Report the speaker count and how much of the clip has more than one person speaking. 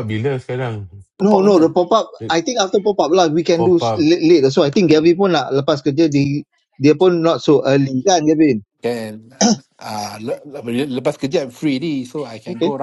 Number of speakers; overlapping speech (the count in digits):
3, about 10%